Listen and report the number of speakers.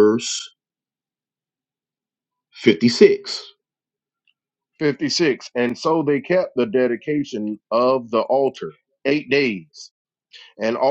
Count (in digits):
2